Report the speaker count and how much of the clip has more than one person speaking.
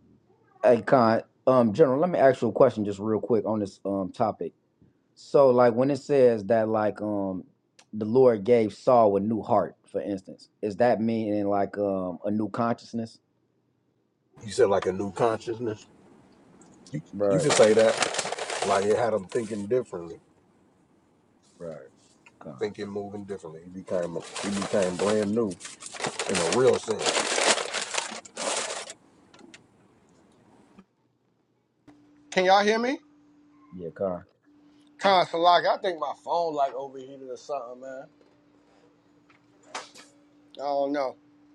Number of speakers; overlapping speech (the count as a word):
three, under 1%